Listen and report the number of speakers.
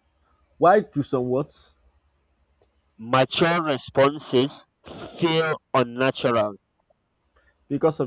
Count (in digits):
2